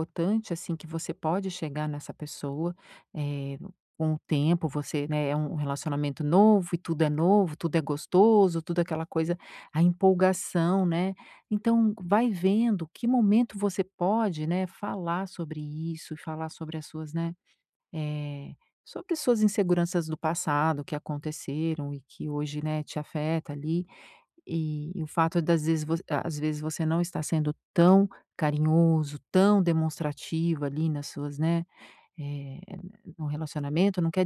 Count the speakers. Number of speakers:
1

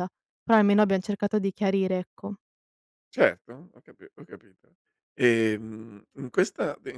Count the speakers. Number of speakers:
2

